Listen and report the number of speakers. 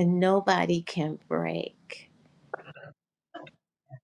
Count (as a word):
one